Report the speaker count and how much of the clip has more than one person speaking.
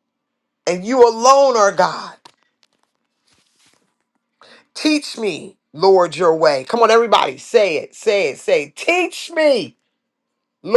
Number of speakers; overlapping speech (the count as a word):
one, no overlap